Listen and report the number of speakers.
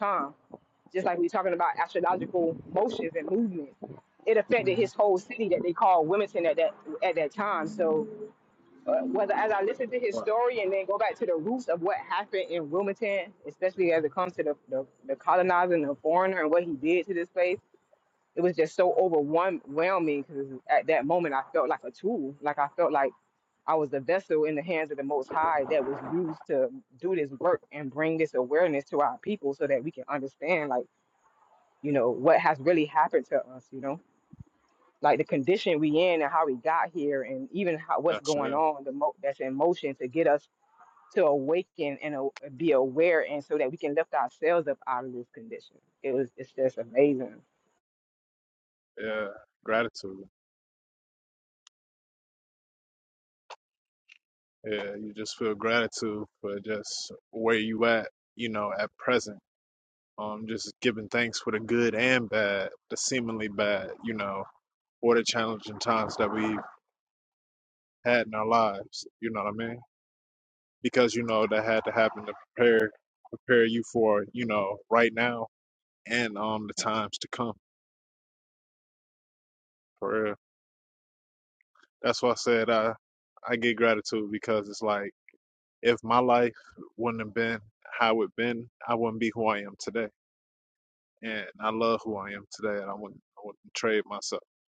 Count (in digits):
2